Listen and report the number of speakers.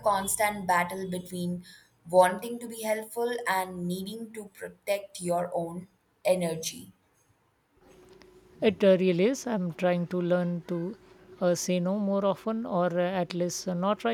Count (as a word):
two